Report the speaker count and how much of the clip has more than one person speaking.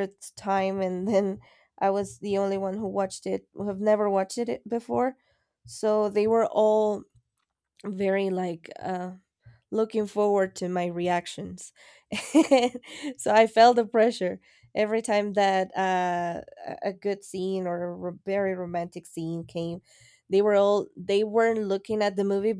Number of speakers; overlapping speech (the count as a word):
one, no overlap